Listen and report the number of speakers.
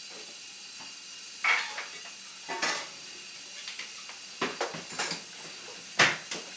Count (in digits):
0